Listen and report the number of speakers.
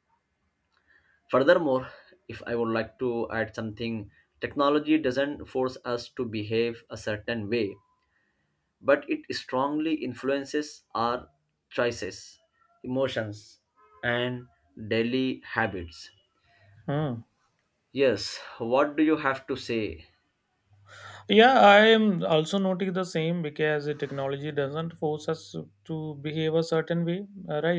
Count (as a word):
two